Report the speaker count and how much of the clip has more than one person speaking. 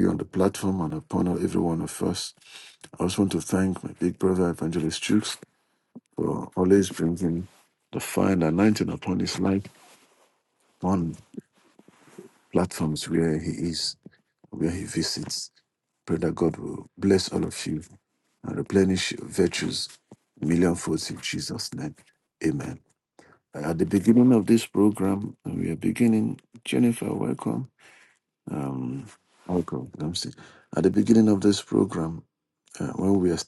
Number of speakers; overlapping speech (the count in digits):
1, no overlap